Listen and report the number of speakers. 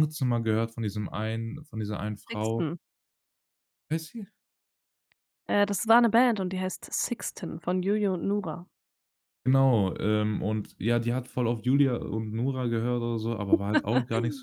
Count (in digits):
2